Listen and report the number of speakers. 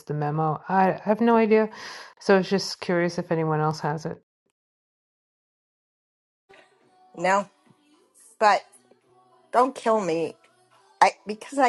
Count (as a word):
two